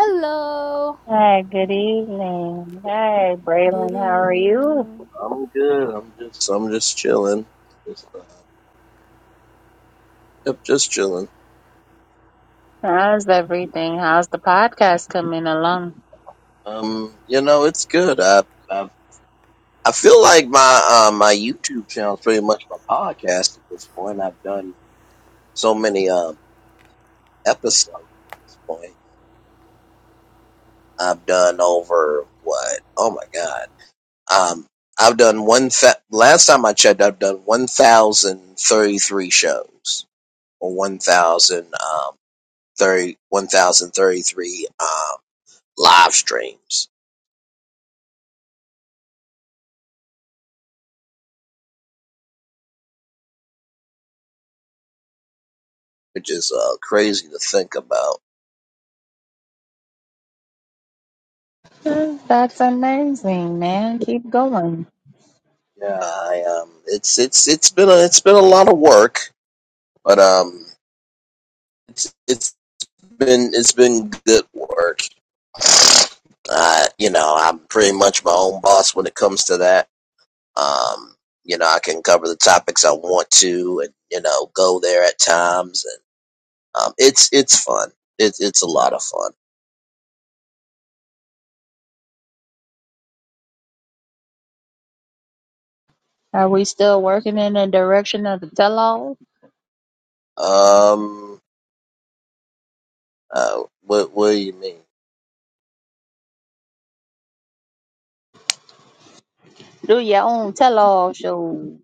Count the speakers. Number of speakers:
3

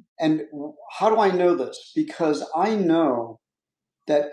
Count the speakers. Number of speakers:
1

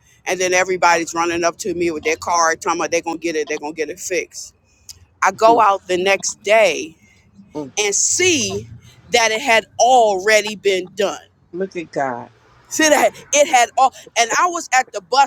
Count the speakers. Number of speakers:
2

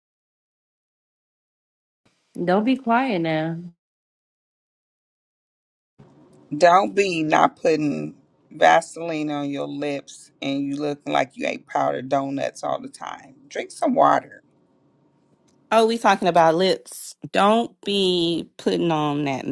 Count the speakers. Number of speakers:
3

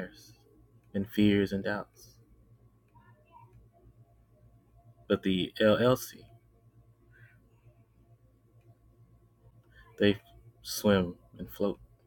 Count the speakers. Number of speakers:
1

